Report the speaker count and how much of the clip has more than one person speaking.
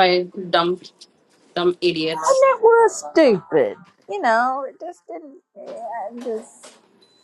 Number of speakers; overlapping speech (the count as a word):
two, about 2%